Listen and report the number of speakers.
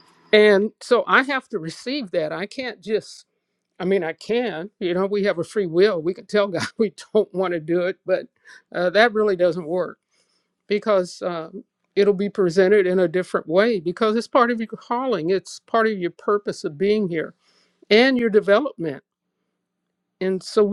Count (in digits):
1